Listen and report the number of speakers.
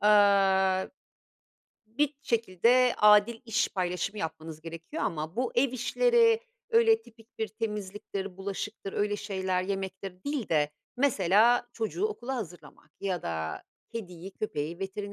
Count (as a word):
one